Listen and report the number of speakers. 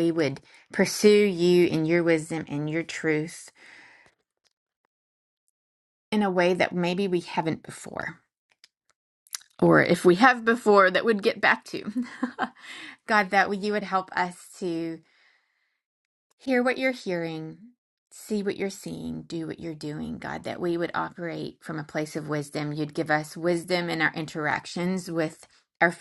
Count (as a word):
one